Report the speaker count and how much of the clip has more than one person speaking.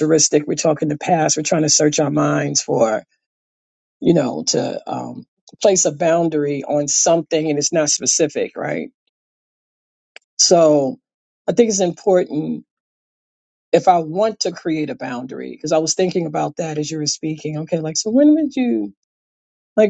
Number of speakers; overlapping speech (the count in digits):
1, no overlap